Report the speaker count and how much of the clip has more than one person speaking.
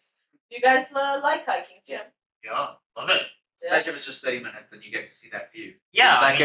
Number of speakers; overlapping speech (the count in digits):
3, about 10%